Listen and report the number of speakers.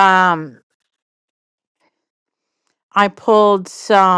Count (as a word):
one